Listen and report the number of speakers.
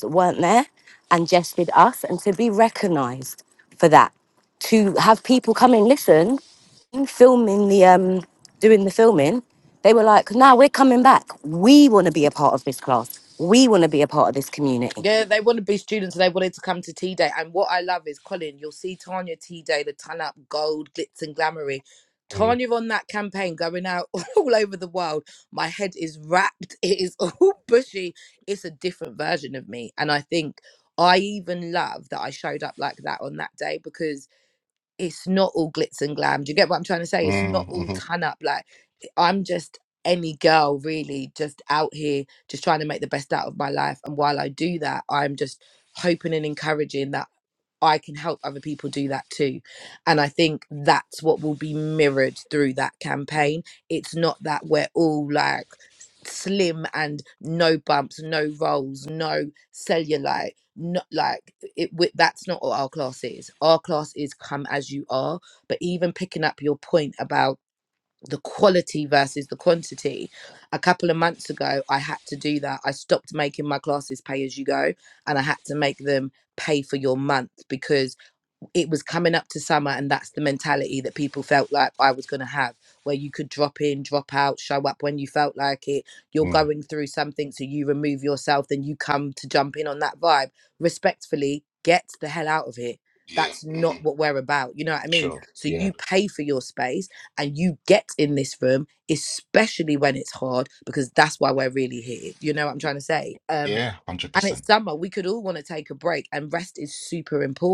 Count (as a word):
three